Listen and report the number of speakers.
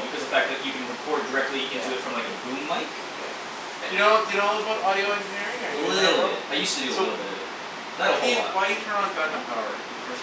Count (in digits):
2